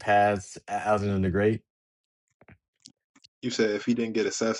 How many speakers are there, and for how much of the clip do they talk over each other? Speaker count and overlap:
2, no overlap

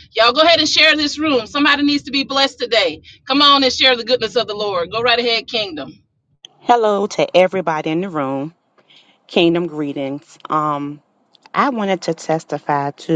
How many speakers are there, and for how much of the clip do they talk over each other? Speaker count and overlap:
2, no overlap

